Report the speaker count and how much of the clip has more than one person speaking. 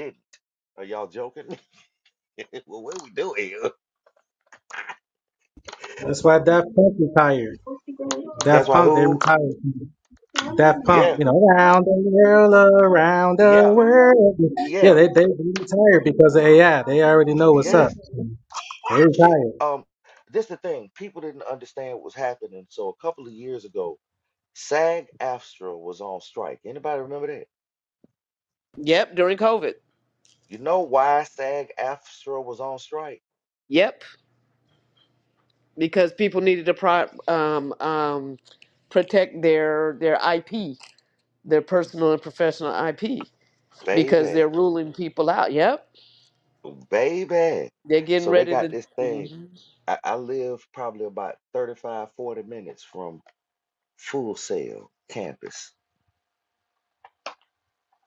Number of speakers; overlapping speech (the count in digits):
3, about 7%